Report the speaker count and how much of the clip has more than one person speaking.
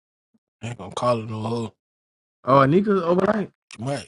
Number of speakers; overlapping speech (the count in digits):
2, no overlap